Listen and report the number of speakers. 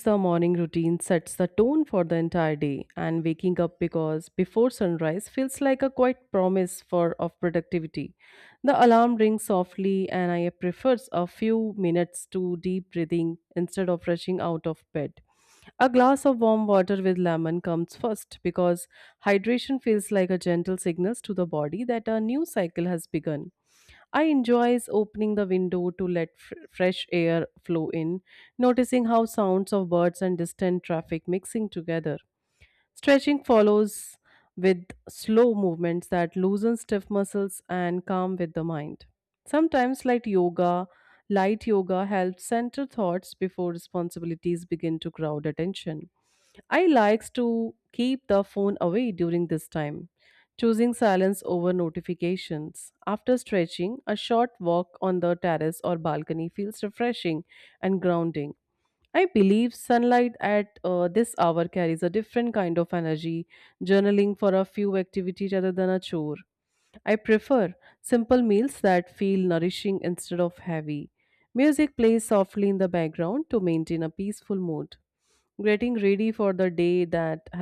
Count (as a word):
one